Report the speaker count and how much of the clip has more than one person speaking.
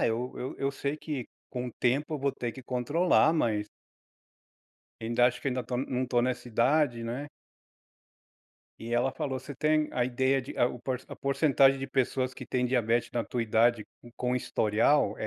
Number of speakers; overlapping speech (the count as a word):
one, no overlap